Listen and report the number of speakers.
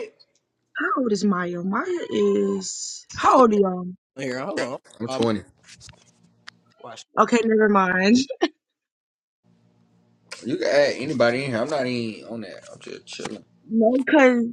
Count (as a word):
three